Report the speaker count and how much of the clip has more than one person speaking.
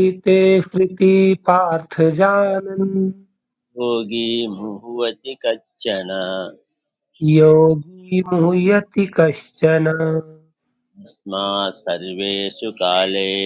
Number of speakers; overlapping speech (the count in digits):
2, no overlap